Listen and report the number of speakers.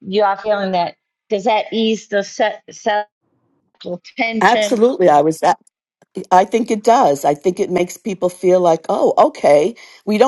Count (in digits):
2